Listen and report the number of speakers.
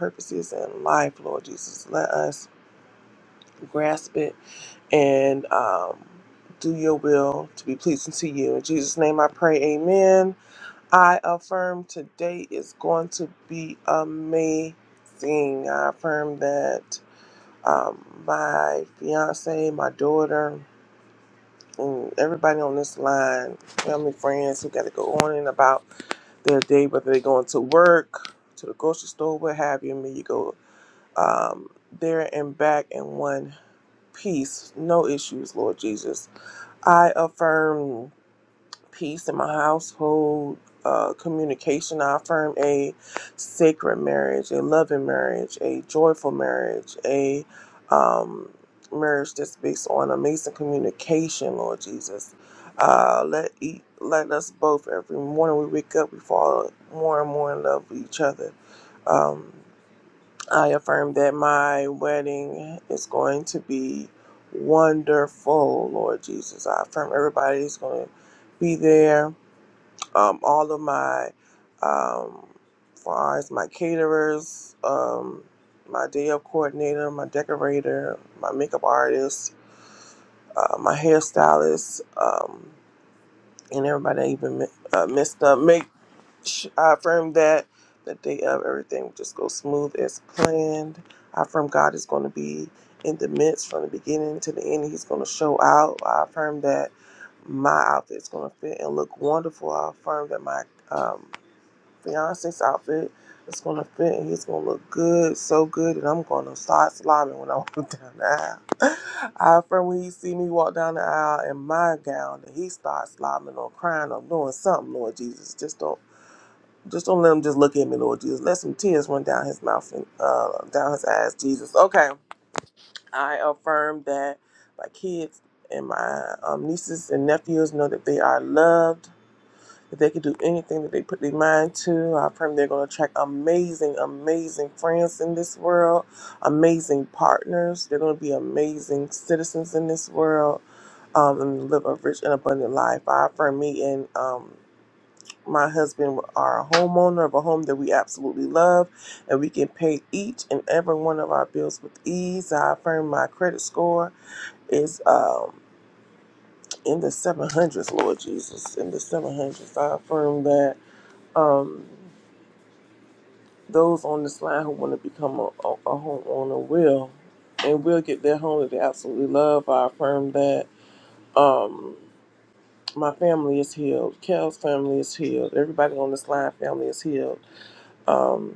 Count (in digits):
1